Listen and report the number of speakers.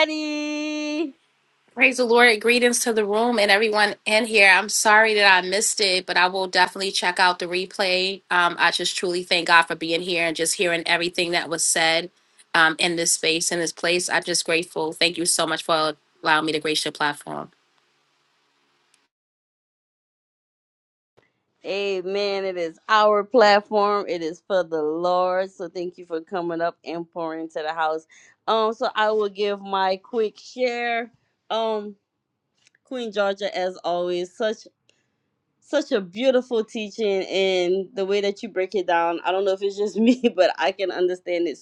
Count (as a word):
two